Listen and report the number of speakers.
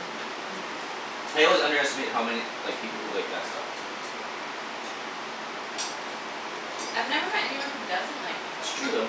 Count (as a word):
two